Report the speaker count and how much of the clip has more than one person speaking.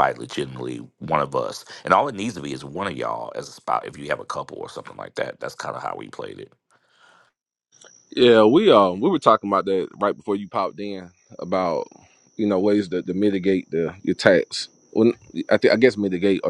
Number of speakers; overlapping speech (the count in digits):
2, no overlap